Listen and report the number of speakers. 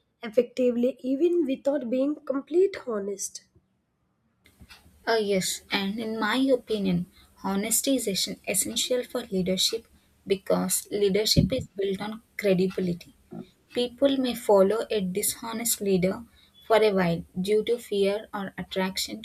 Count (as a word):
two